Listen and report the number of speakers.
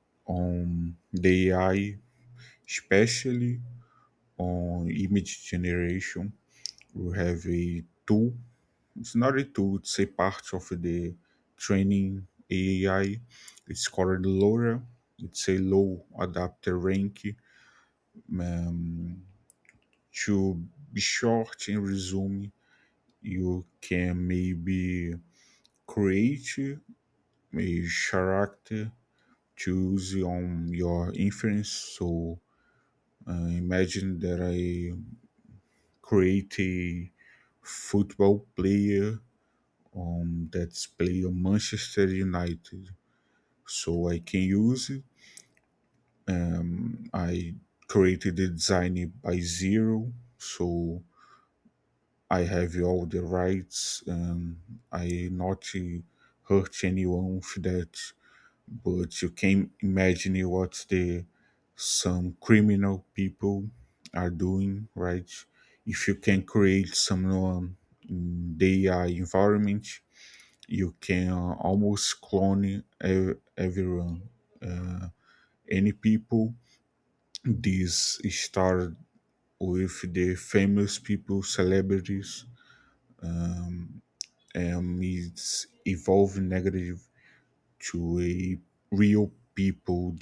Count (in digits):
1